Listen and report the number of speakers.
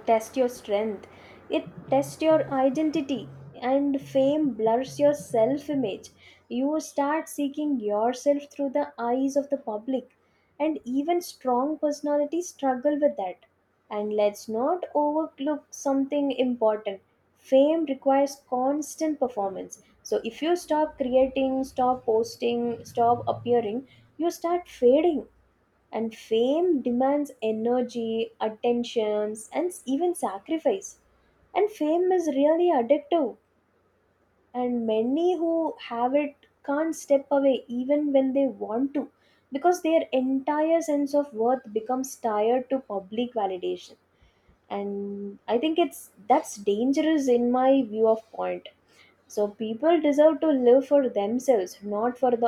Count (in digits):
1